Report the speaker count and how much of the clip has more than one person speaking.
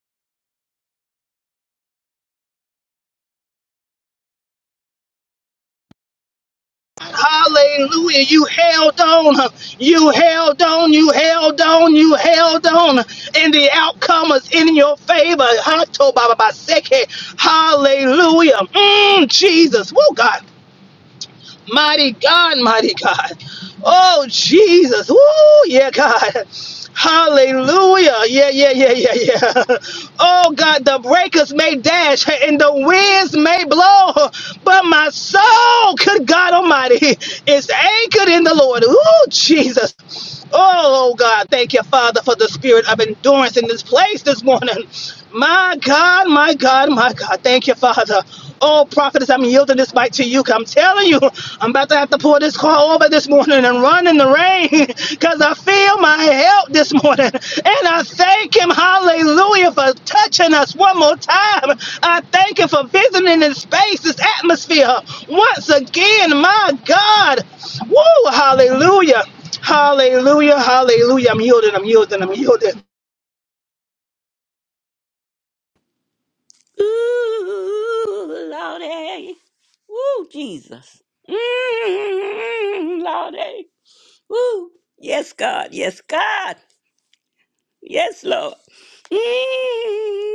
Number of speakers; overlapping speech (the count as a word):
two, no overlap